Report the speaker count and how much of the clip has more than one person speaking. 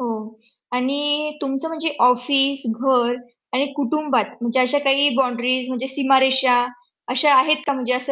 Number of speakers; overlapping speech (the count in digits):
1, no overlap